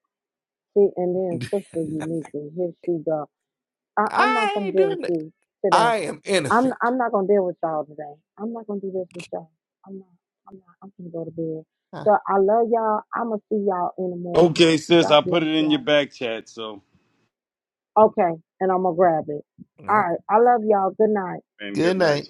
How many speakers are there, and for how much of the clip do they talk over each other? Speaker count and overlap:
3, about 14%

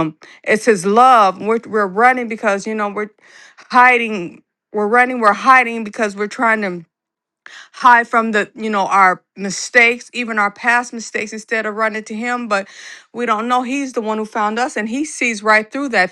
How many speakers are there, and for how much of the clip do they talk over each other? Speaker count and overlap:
1, no overlap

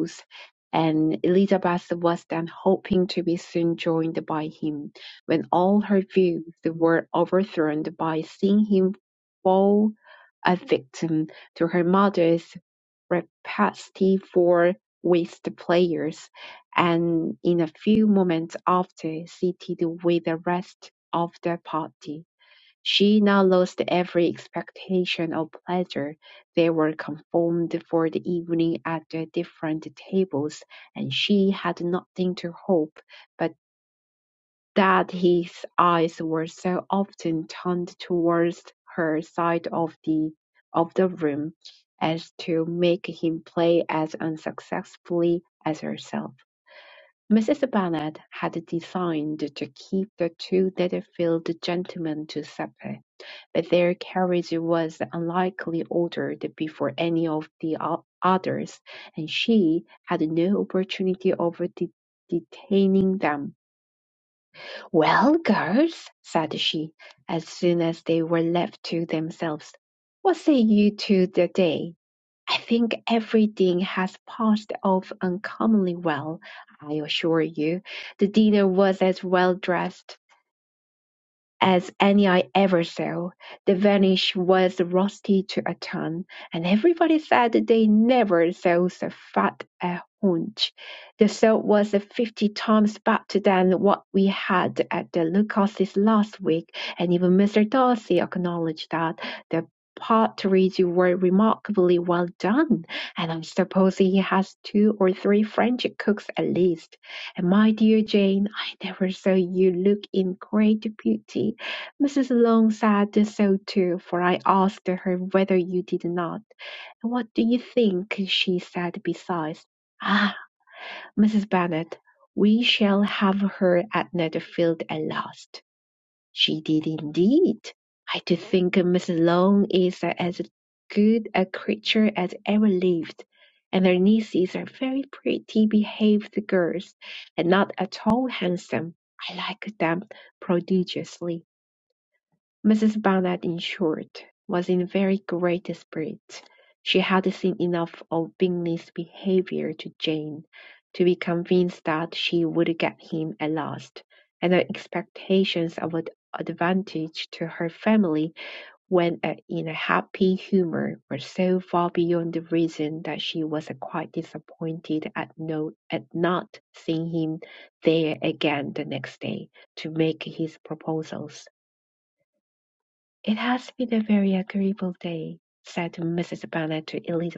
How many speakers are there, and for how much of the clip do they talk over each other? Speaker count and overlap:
1, no overlap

